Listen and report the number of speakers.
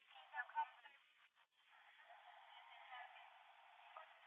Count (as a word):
zero